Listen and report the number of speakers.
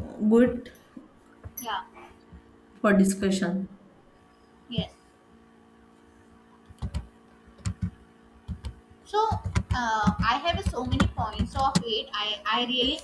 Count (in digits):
2